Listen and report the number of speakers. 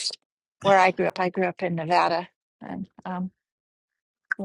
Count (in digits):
1